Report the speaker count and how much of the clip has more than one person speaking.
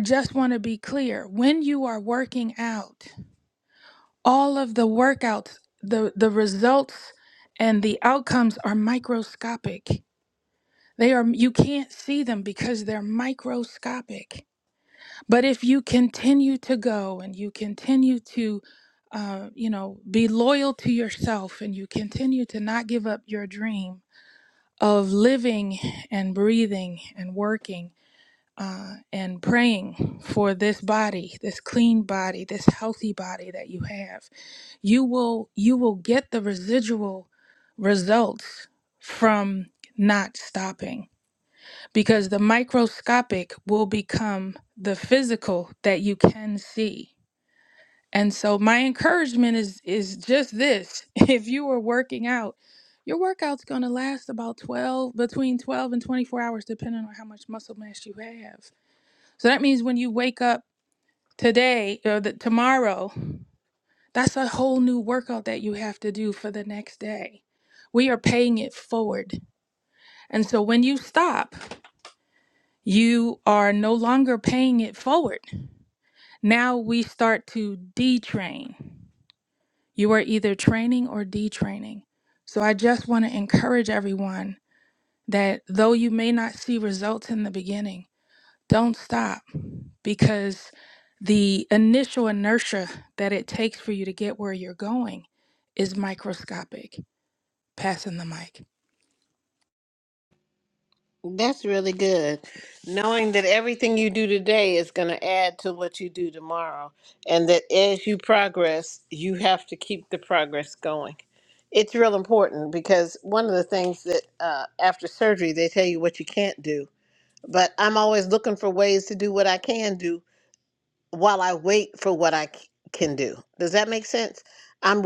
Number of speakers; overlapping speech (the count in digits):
2, no overlap